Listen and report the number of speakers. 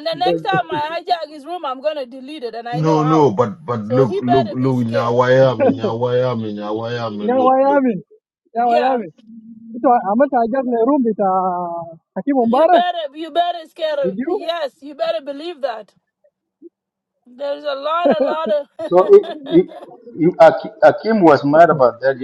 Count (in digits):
4